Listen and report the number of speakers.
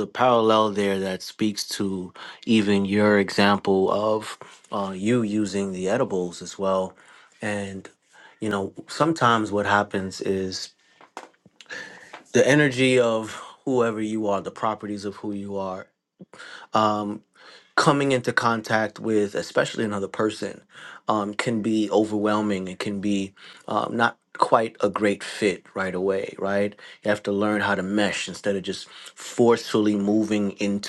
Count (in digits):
1